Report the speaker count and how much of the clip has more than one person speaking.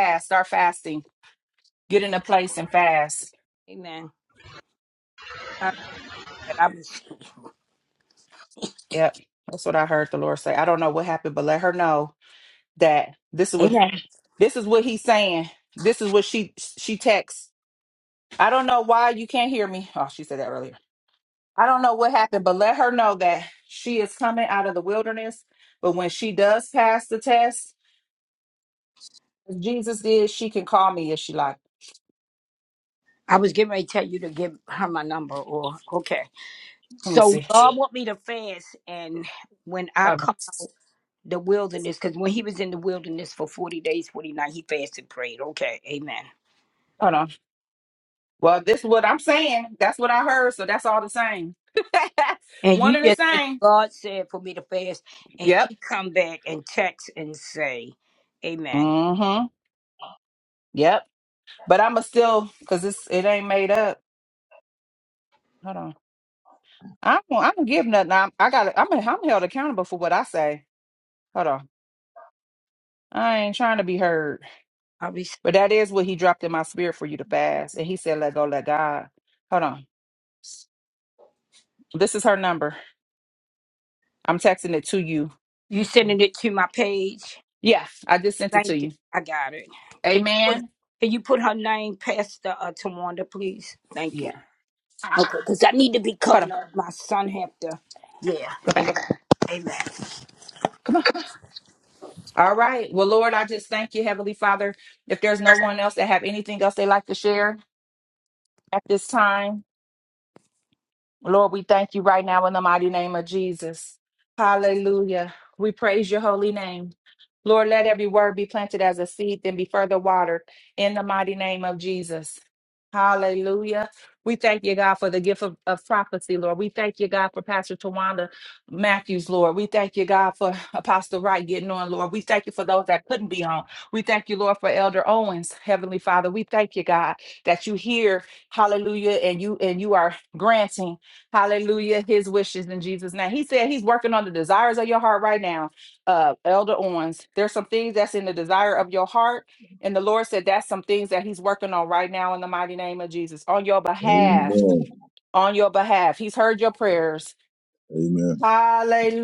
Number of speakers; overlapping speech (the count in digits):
3, about 3%